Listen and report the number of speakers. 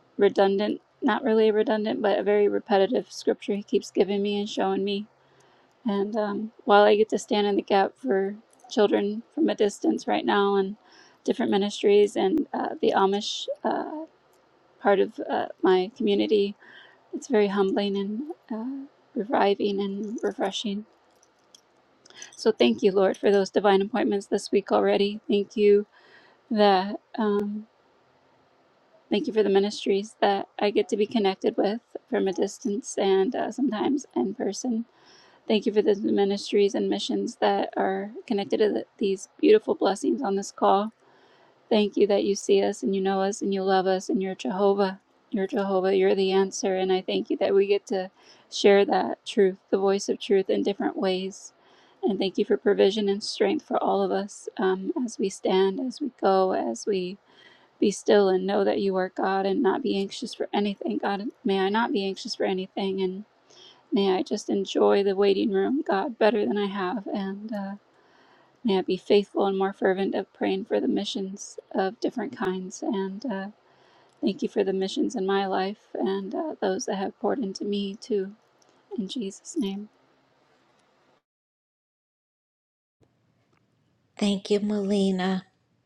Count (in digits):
2